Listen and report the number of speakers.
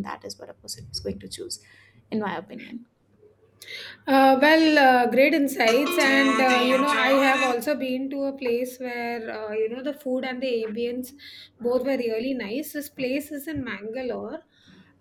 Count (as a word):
two